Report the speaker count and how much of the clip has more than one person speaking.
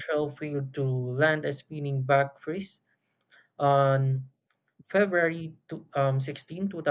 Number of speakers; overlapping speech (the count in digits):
1, no overlap